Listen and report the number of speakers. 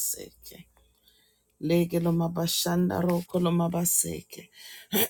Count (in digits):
1